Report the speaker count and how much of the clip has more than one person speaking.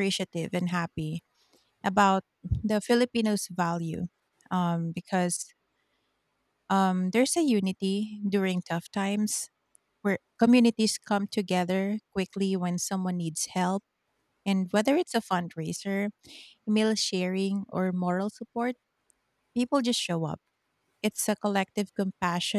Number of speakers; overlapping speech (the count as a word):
one, no overlap